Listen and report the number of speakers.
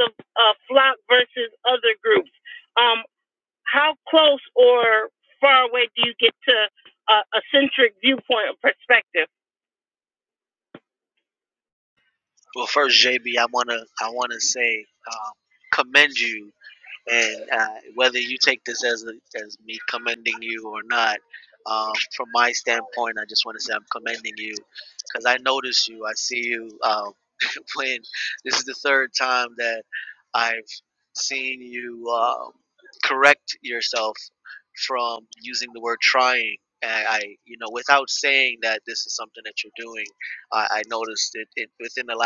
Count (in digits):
2